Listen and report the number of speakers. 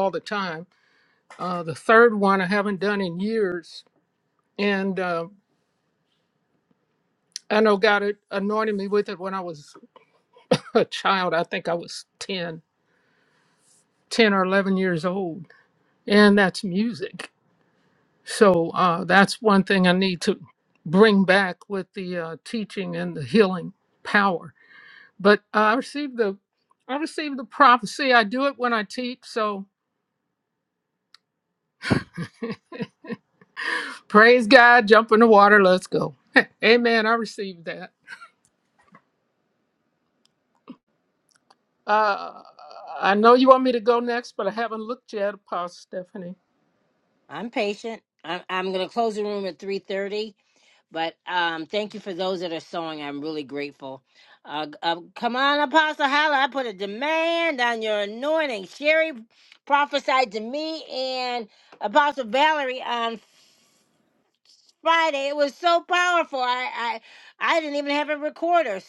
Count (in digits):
2